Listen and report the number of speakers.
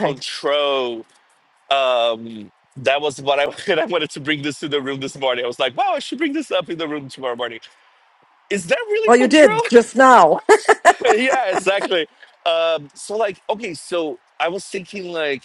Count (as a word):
two